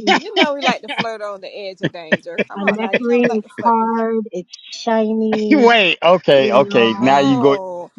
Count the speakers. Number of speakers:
three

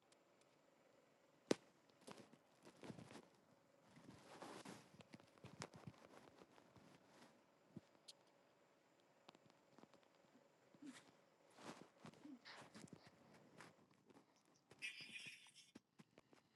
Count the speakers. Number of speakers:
zero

